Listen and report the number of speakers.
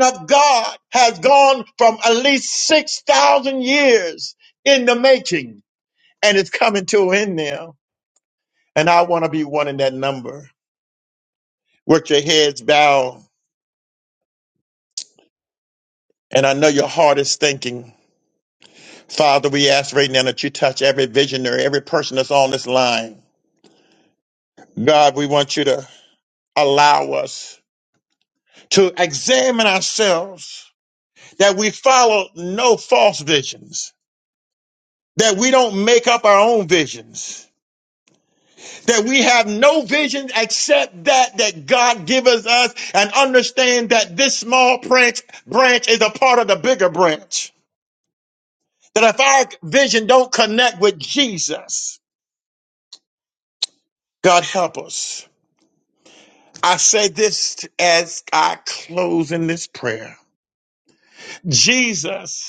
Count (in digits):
1